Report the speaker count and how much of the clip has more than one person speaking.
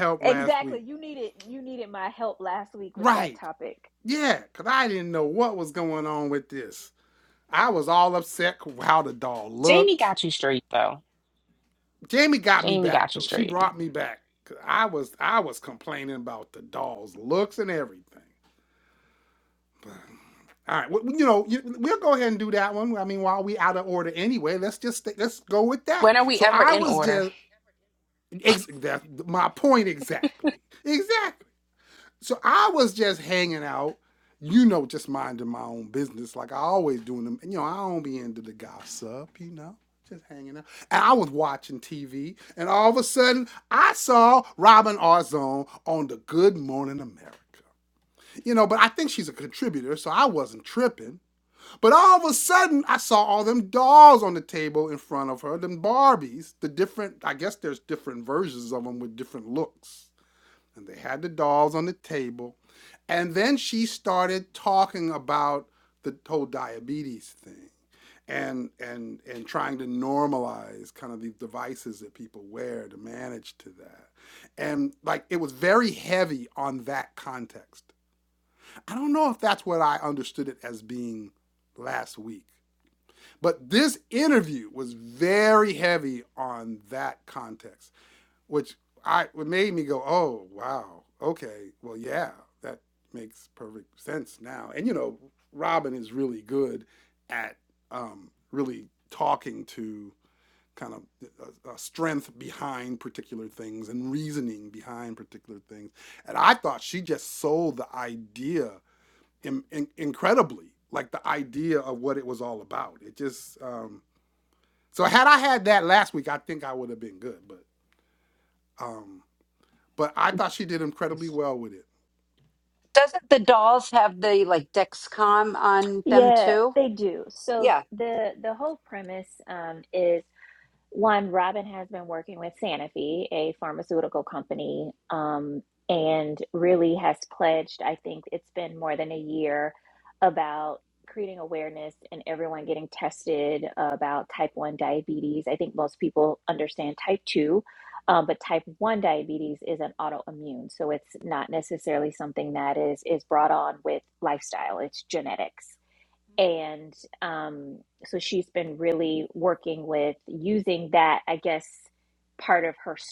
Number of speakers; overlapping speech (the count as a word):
four, about 3%